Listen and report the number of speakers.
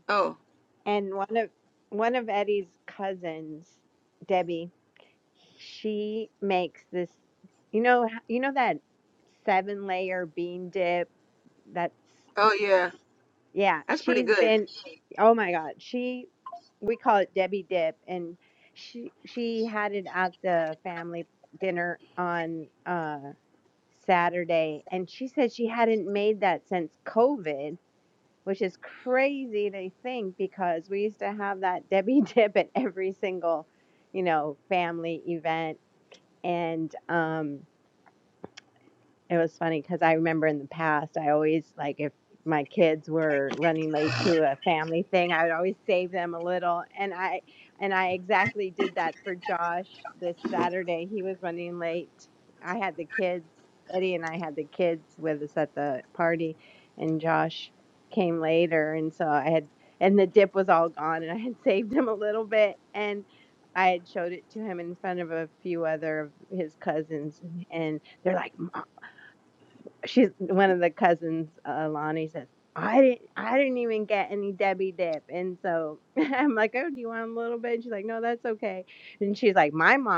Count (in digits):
2